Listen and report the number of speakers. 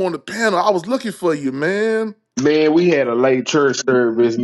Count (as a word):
two